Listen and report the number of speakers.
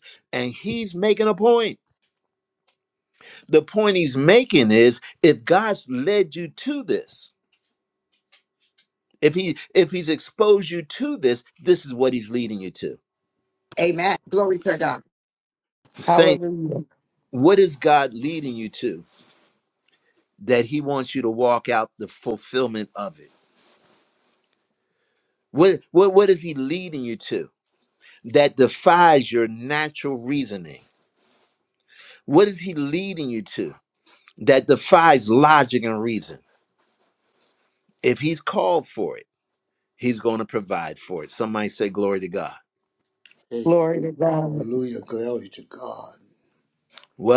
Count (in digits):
4